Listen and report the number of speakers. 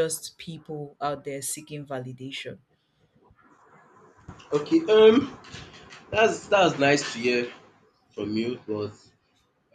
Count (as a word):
two